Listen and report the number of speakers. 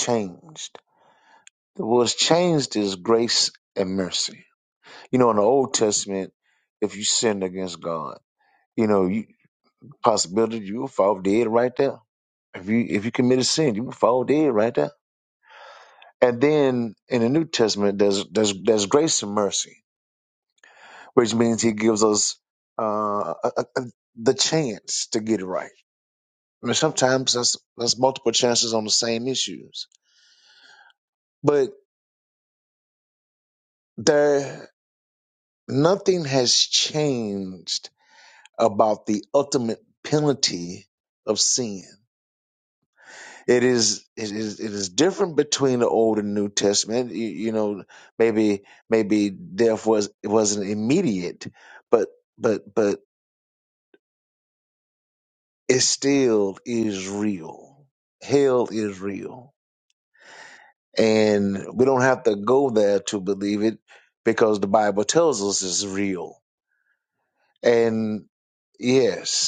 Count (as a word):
one